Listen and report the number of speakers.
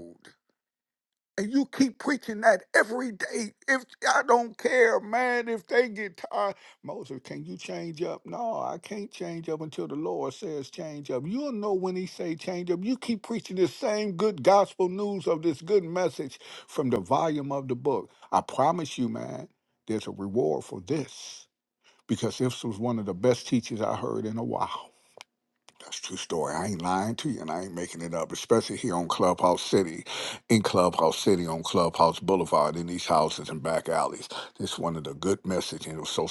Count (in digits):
1